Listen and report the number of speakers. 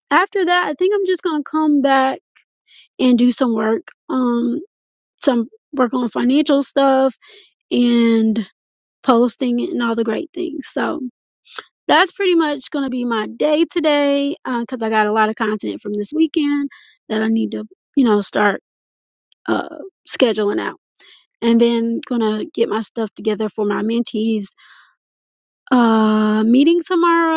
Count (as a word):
one